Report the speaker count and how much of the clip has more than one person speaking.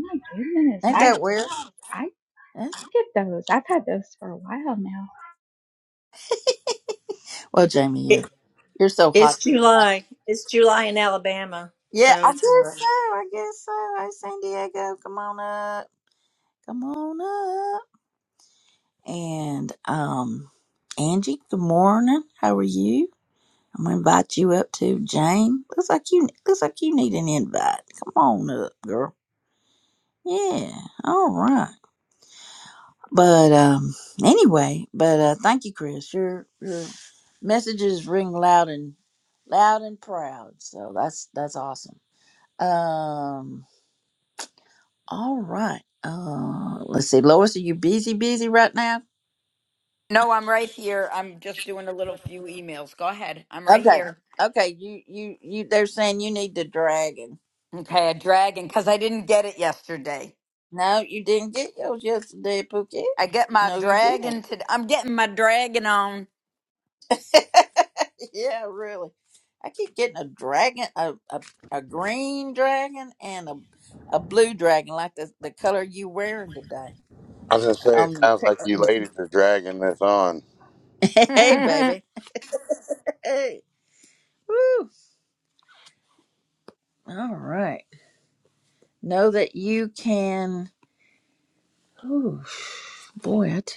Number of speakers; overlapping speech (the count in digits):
5, about 4%